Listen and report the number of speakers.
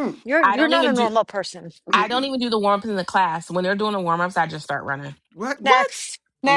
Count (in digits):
3